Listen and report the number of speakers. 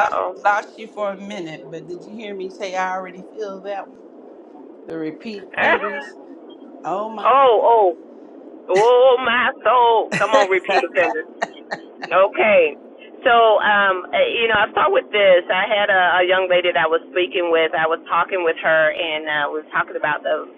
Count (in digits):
2